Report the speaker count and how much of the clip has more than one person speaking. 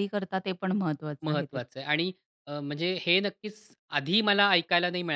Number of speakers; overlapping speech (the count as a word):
two, about 7%